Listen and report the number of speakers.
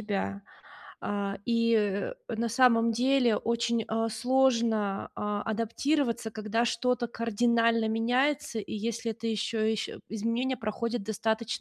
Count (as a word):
one